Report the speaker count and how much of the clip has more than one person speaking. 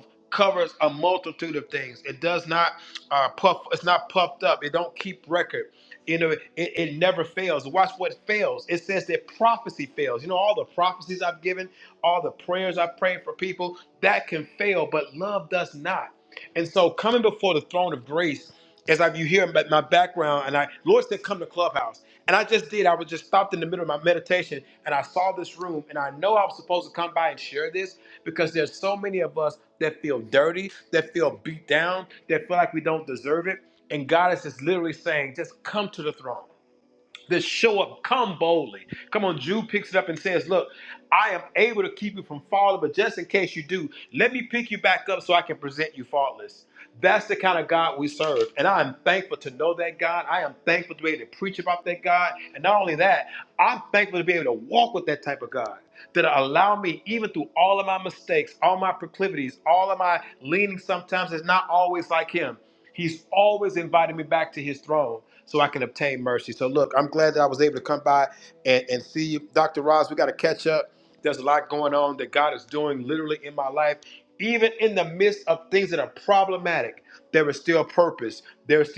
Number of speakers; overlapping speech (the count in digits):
1, no overlap